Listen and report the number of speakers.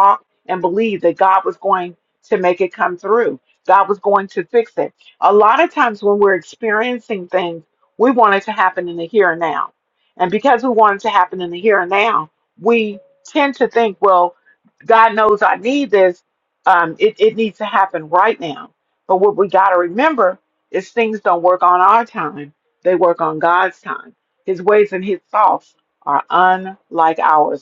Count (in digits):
1